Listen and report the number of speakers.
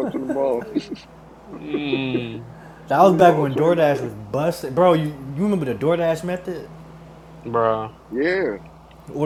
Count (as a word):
three